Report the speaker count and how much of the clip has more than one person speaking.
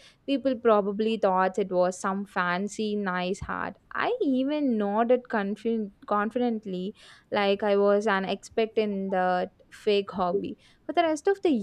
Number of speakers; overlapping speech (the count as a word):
one, no overlap